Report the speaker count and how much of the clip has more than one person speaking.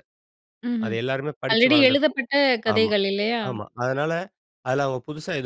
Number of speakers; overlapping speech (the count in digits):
2, about 20%